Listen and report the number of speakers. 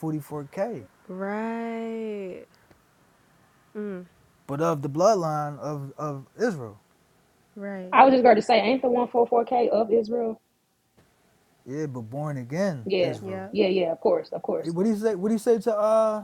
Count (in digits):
3